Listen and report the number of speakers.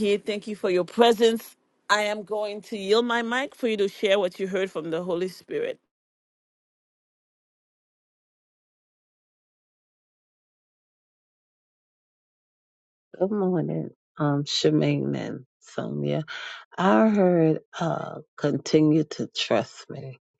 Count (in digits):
2